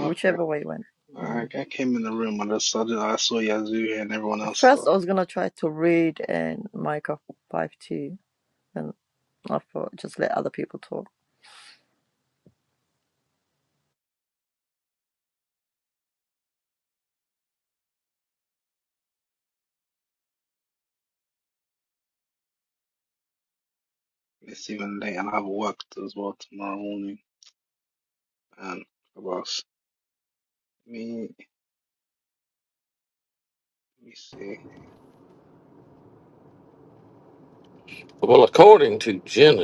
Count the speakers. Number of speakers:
3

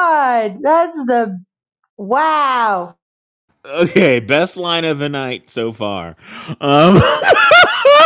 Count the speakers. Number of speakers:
2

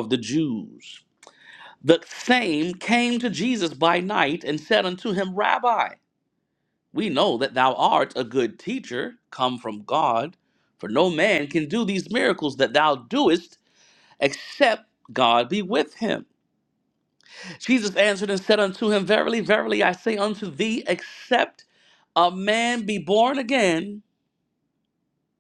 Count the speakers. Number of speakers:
1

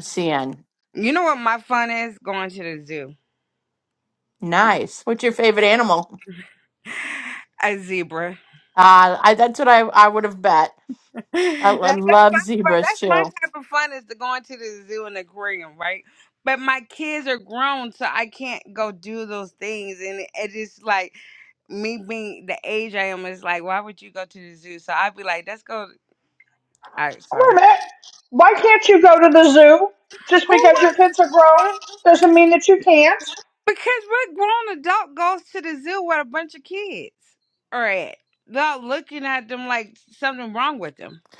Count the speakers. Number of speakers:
3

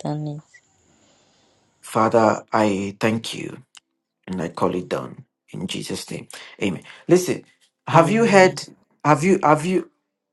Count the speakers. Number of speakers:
2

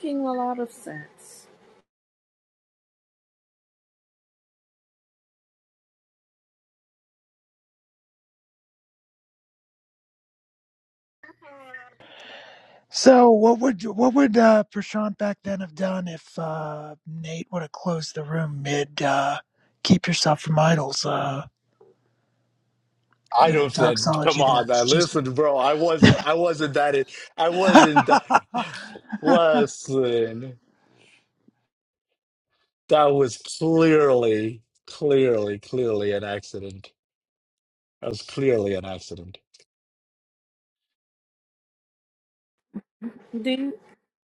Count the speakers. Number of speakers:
3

